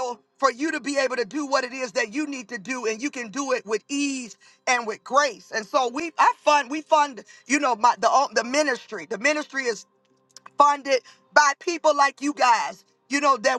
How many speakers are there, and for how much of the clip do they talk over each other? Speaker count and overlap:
1, no overlap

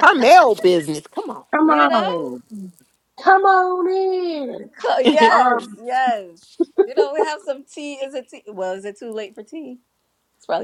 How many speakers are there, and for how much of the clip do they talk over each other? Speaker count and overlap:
3, about 8%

